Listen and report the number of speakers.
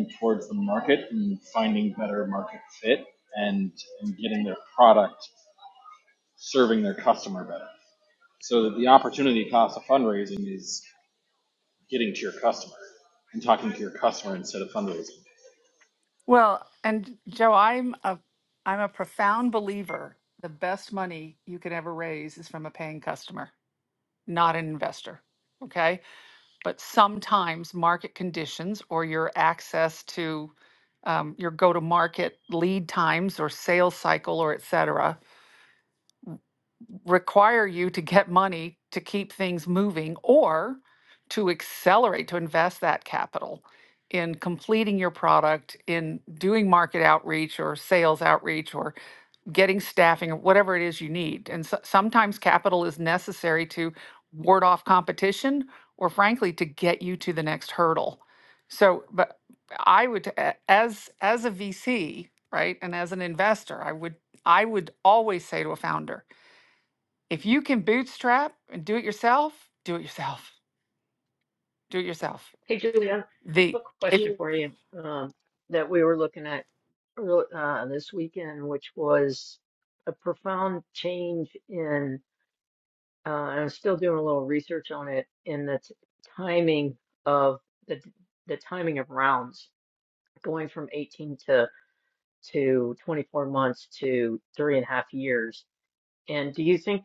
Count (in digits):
3